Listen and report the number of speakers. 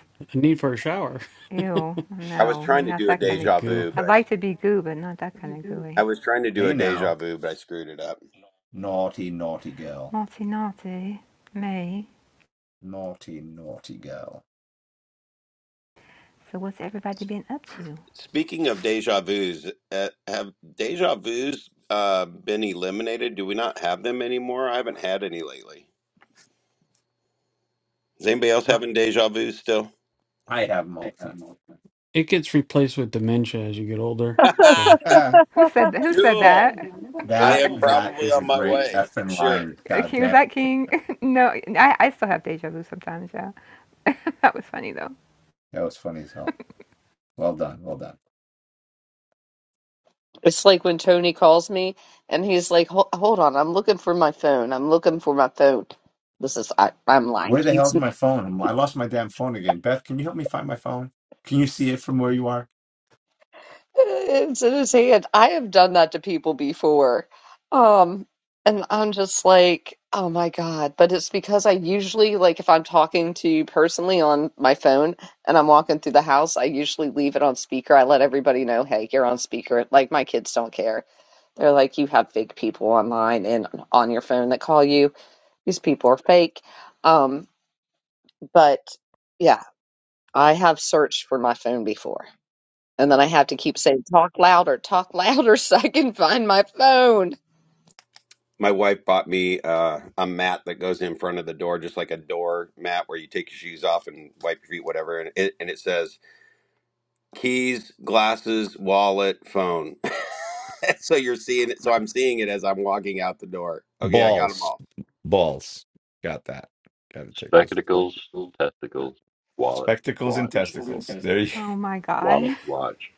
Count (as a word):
six